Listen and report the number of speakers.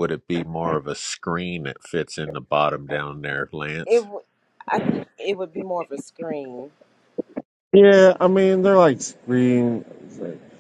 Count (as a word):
three